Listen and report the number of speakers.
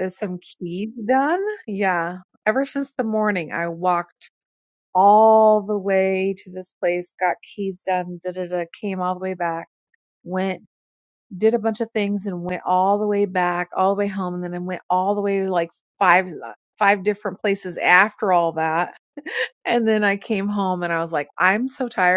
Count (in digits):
1